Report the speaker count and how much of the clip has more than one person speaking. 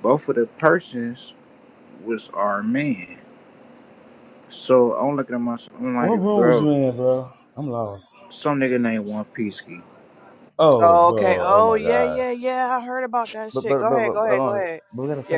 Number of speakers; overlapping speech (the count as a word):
three, about 23%